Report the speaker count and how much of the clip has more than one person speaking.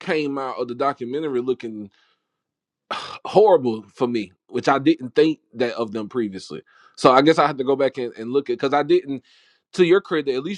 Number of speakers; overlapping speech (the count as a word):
one, no overlap